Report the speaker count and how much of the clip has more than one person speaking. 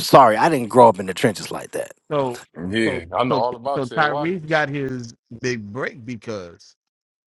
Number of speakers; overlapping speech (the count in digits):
3, about 19%